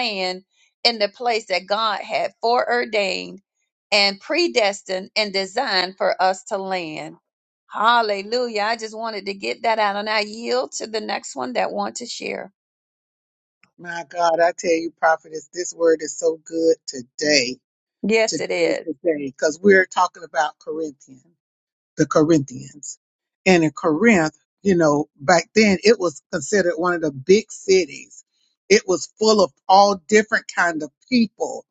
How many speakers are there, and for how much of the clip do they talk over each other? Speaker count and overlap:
2, about 2%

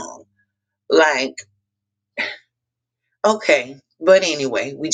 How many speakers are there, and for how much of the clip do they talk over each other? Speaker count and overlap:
1, no overlap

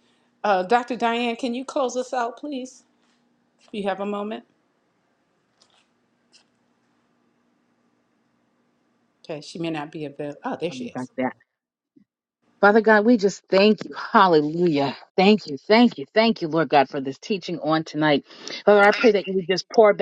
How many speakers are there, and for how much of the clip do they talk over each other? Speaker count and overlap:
2, about 1%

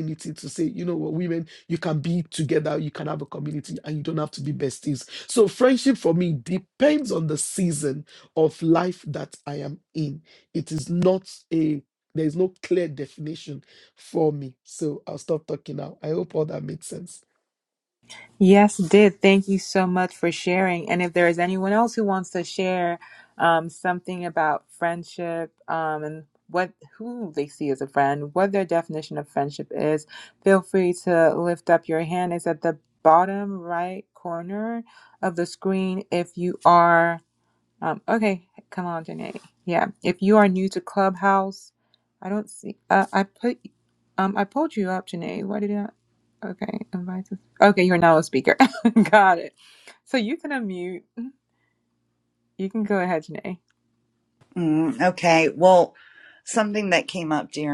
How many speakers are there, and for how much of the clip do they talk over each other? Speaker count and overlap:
3, no overlap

